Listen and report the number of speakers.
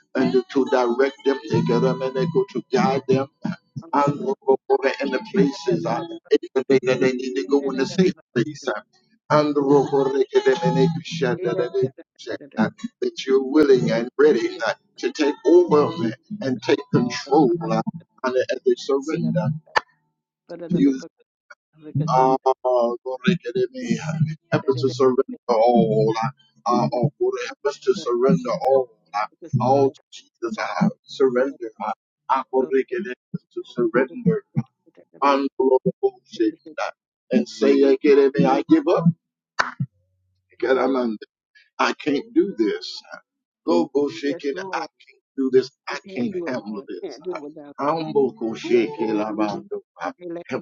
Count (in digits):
2